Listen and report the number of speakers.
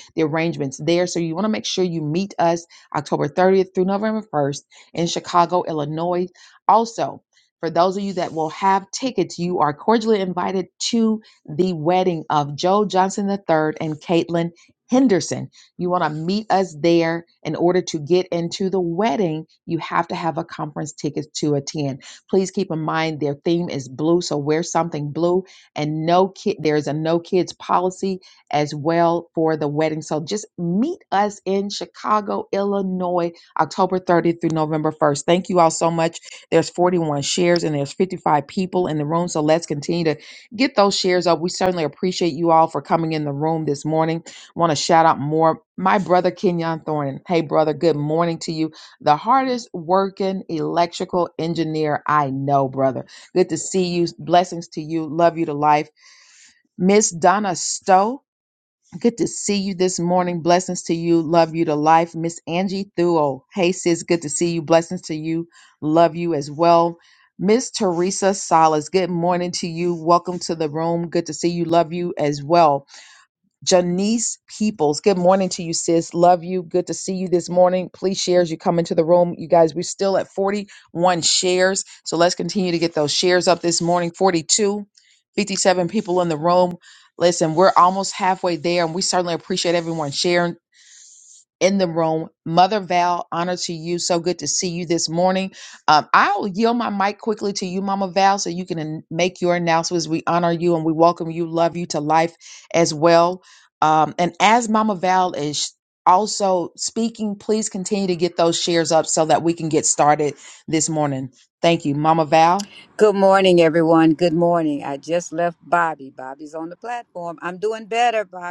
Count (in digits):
2